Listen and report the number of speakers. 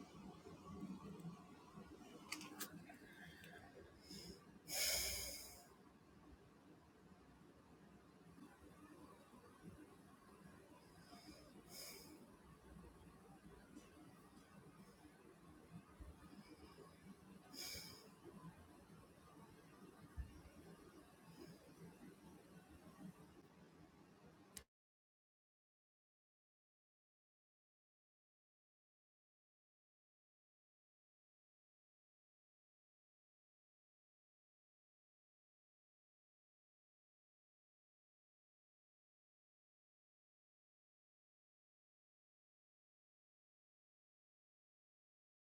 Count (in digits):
0